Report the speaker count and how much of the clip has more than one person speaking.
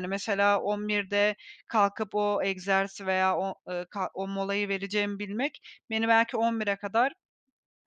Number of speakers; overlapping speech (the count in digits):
1, no overlap